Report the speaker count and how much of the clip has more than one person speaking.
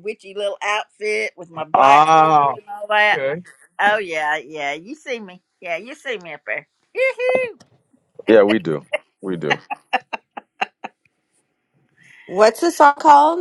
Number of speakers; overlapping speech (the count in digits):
3, about 7%